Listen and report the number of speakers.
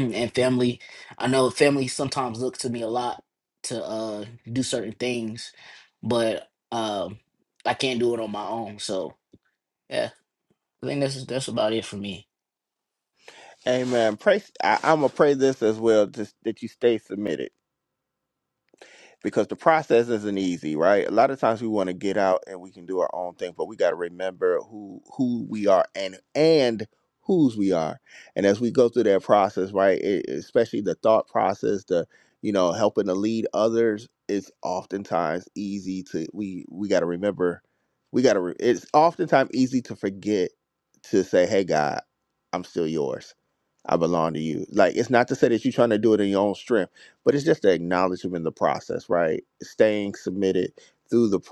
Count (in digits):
2